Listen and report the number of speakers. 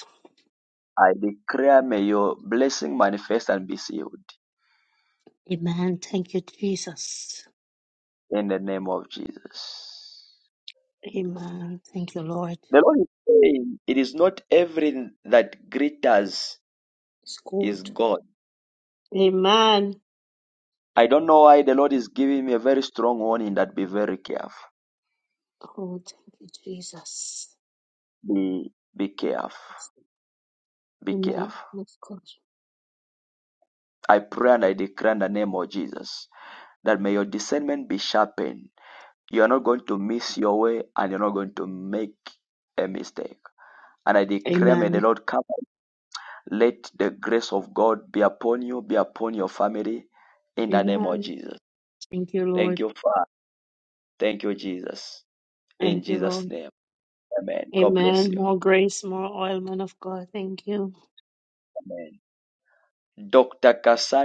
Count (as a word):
two